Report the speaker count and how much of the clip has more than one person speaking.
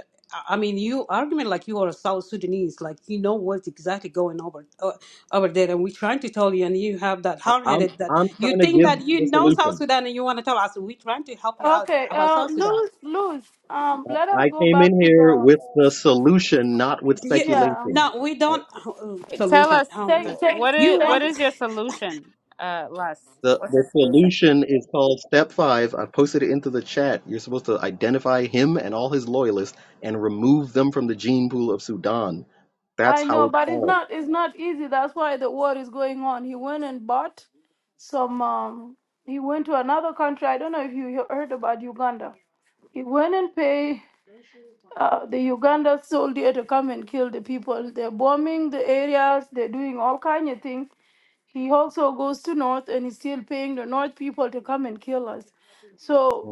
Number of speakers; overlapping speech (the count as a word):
four, about 17%